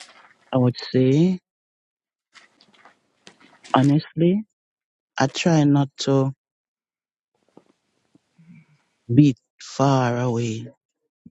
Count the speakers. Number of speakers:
one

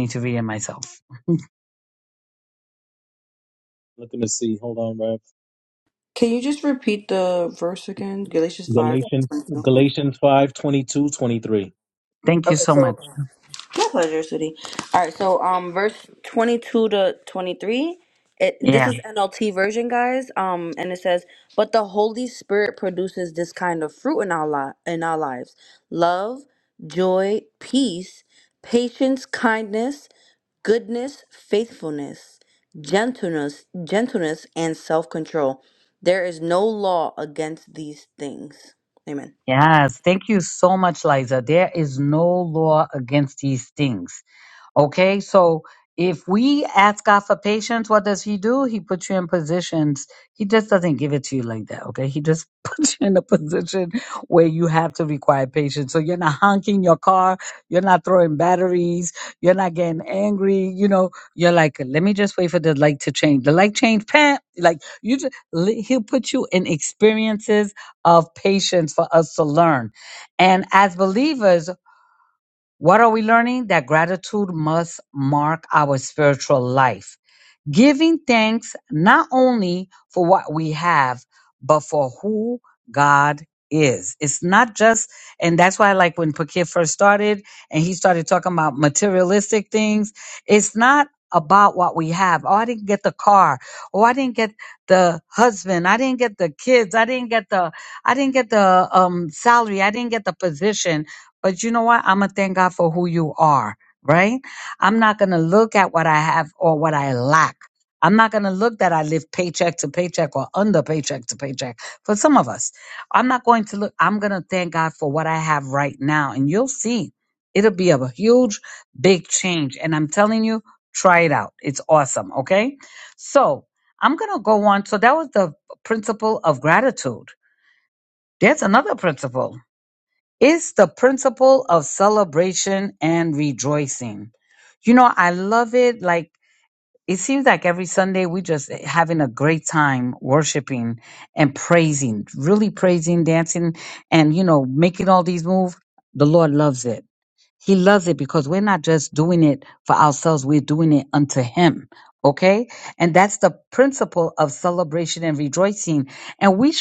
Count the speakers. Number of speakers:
three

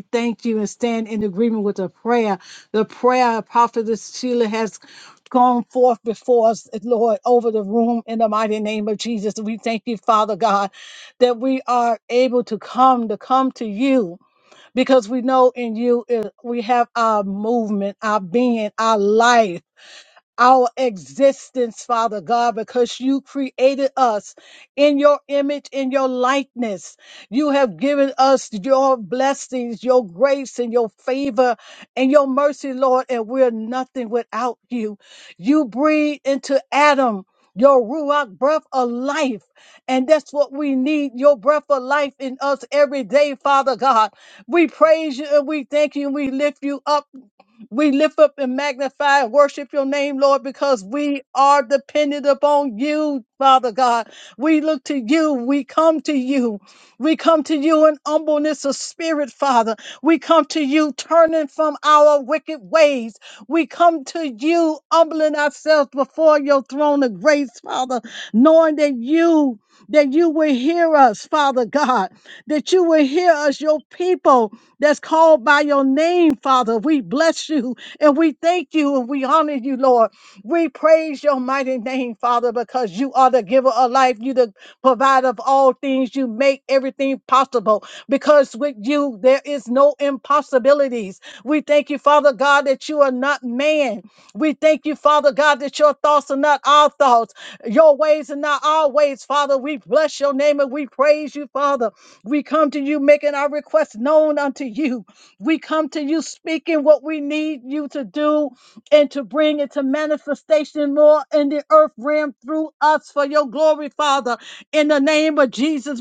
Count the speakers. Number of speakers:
one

